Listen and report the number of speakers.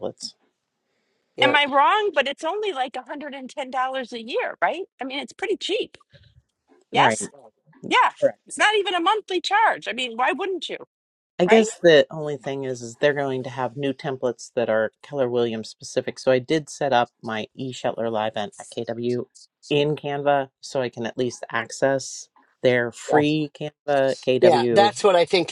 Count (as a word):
three